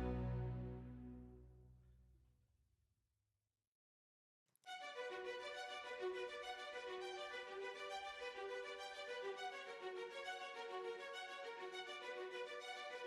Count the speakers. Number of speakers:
0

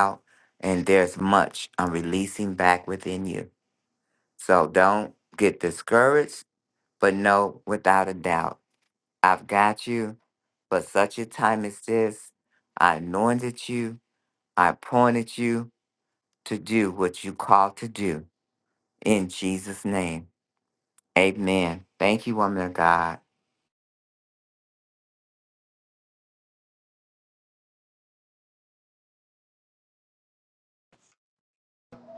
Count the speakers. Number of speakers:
1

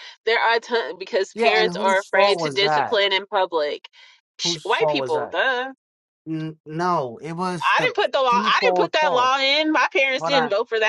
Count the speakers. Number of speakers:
2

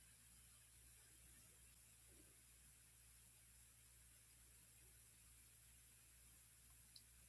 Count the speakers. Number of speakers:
0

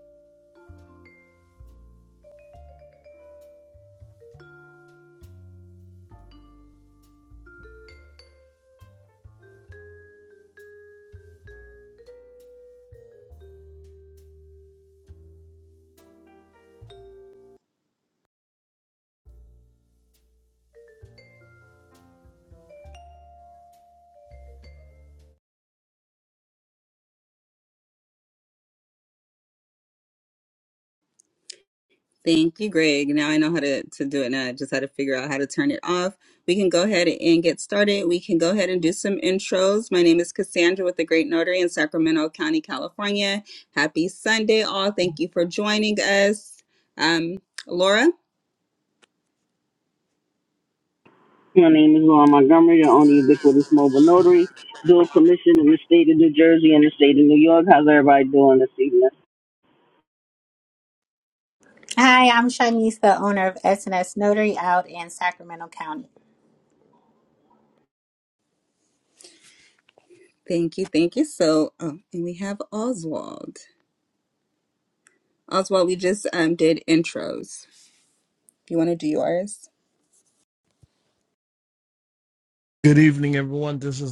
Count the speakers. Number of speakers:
4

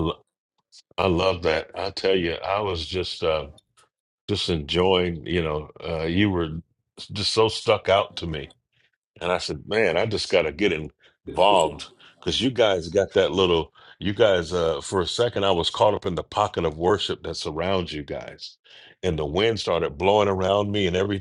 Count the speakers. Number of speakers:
1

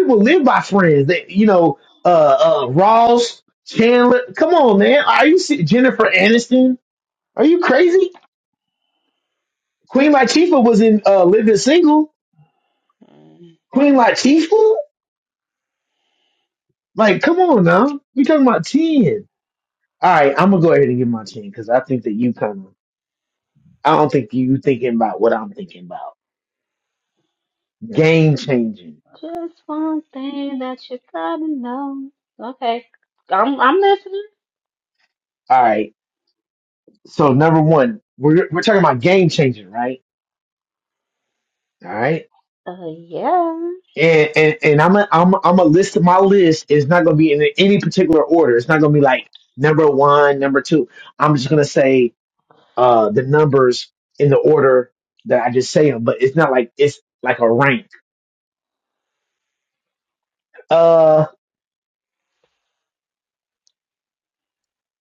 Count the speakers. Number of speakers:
2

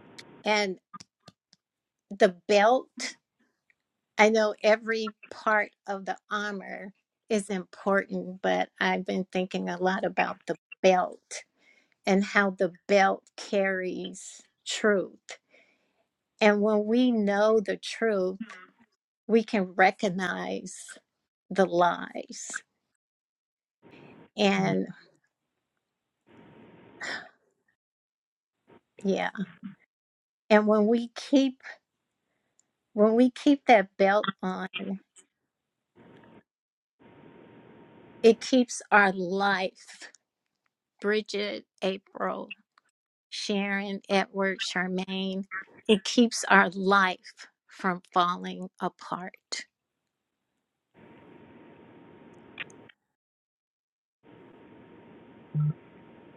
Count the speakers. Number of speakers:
1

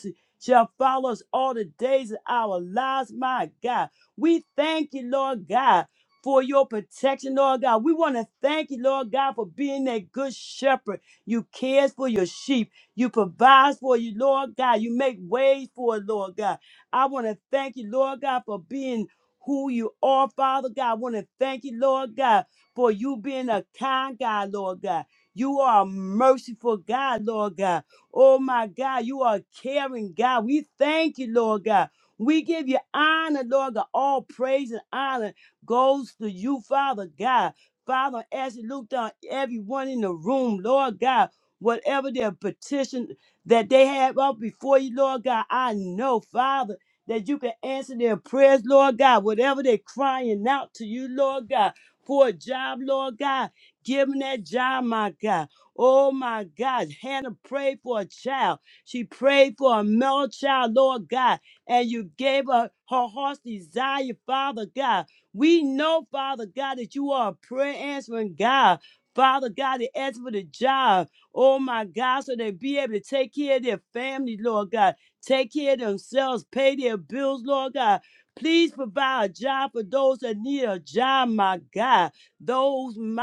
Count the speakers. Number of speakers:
1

